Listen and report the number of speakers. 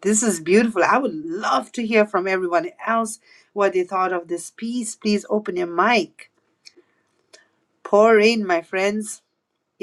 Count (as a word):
one